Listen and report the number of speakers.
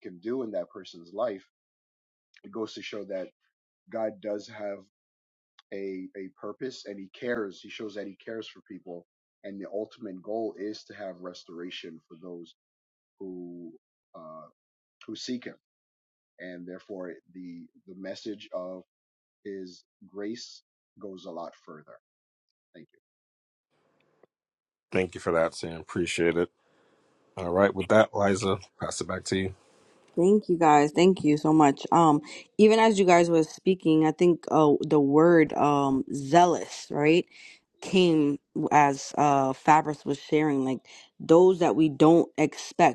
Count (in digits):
3